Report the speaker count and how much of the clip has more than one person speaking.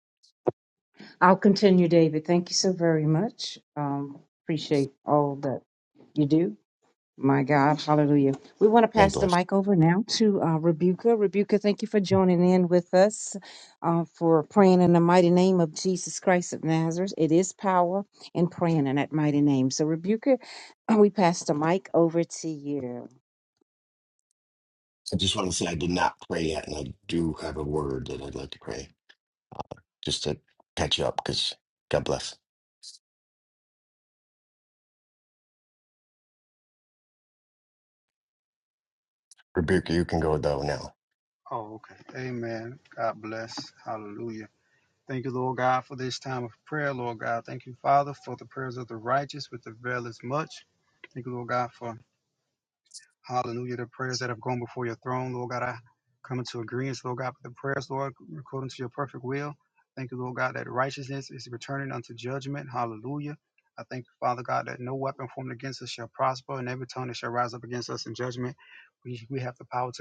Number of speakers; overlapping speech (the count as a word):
three, about 1%